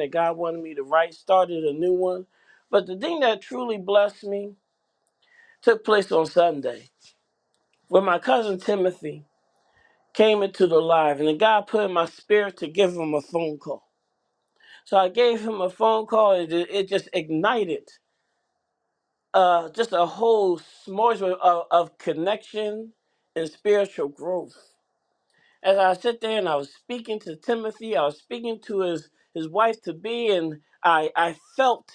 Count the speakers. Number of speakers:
1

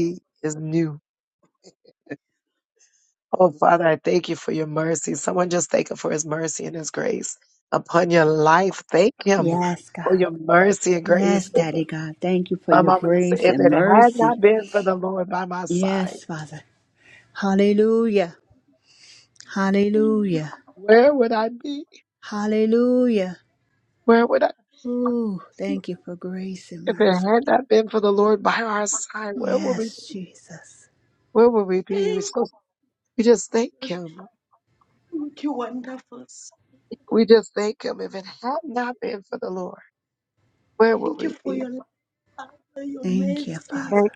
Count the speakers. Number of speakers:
3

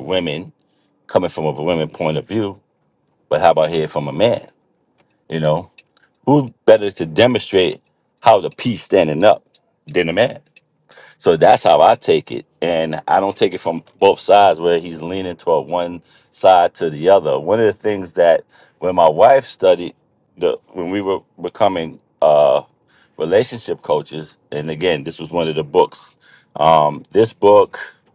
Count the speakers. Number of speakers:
1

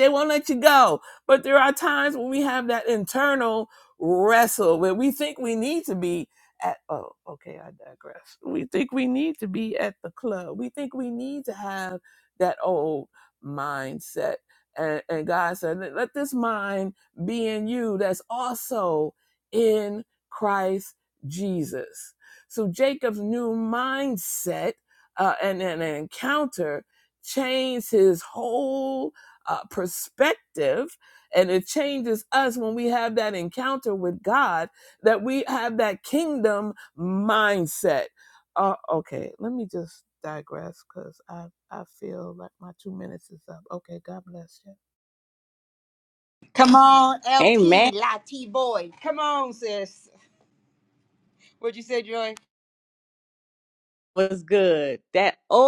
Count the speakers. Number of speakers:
3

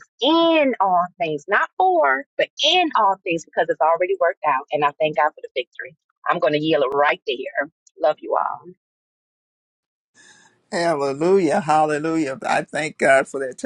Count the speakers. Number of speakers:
2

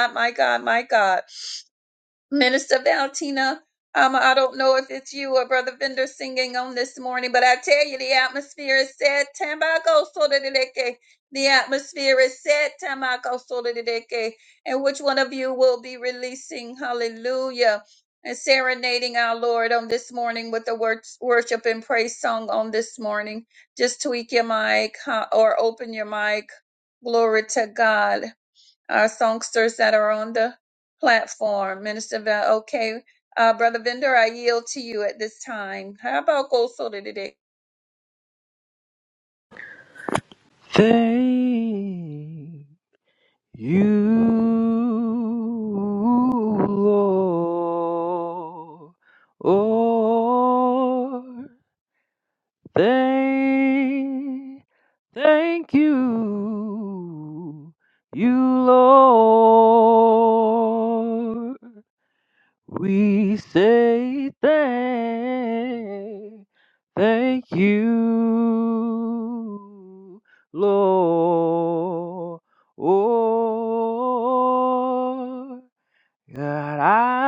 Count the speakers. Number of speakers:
2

